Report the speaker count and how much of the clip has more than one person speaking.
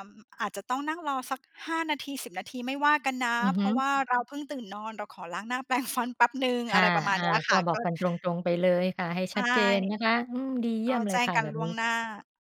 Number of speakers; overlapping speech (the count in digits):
2, about 19%